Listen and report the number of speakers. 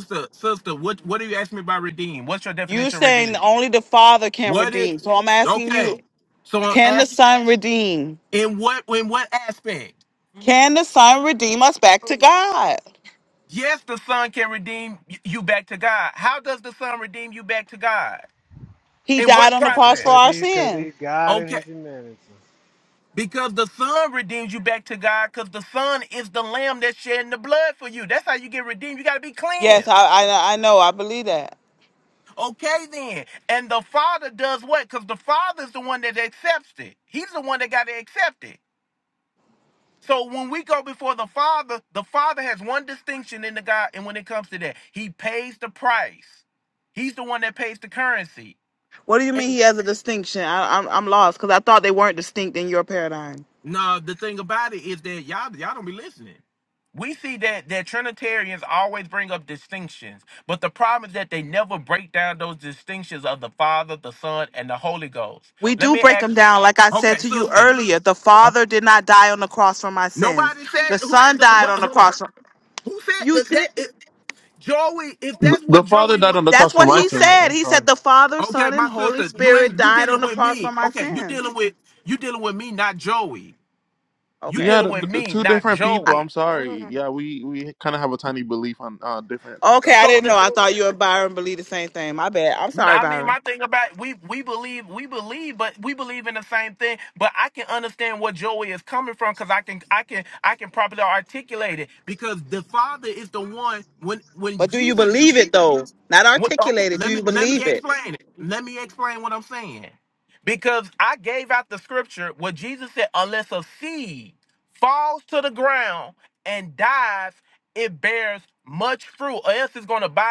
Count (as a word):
four